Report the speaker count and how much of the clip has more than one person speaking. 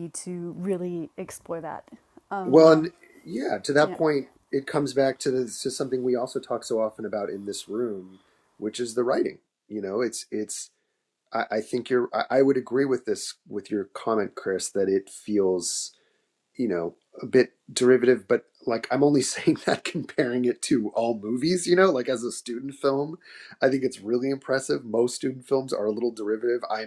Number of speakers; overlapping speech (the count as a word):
two, about 2%